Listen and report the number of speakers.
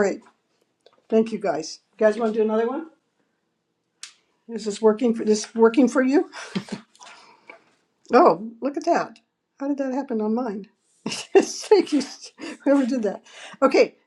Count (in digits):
1